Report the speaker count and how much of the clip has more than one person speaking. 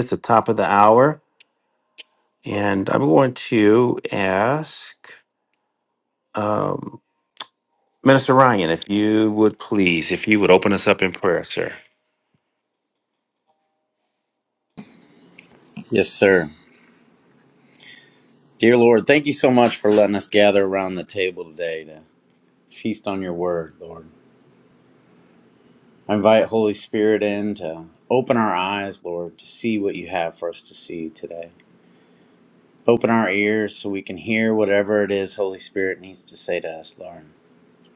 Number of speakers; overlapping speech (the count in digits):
2, no overlap